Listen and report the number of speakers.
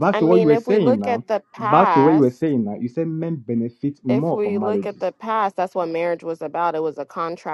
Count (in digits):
2